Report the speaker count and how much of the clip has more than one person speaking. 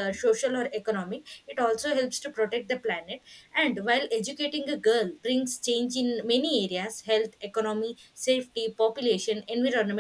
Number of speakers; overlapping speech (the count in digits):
1, no overlap